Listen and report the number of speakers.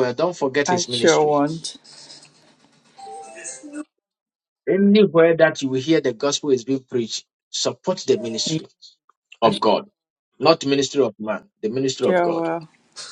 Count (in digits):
2